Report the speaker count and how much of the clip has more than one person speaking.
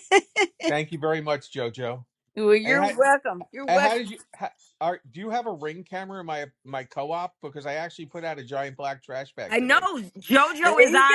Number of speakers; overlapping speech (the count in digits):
3, about 14%